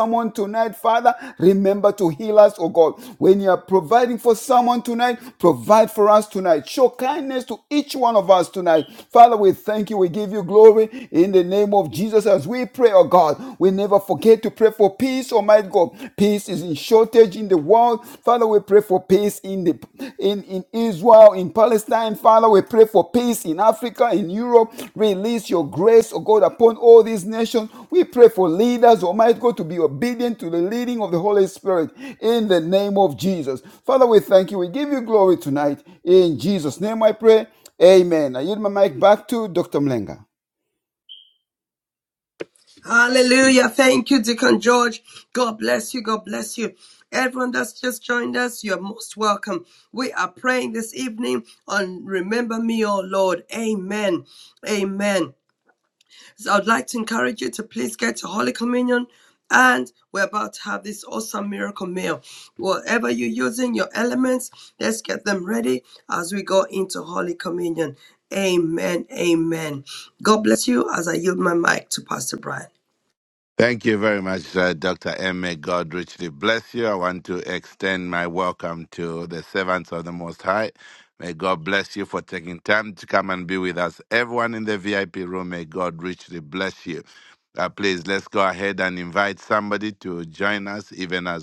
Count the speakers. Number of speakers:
3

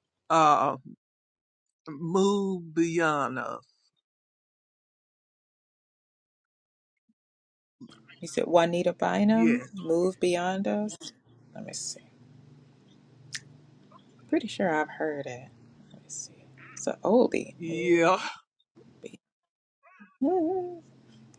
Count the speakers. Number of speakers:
2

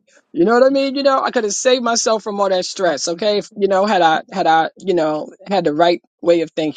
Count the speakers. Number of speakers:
1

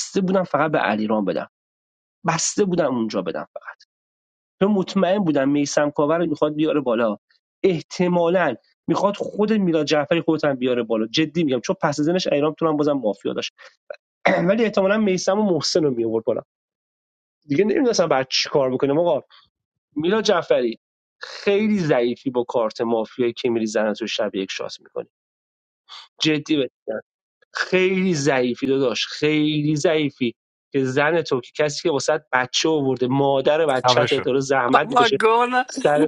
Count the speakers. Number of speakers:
2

